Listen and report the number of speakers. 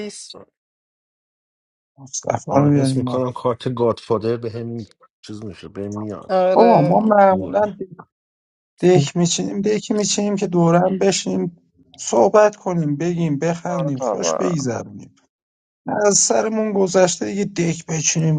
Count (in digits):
3